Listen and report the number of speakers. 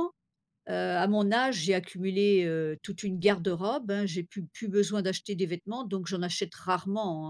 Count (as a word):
one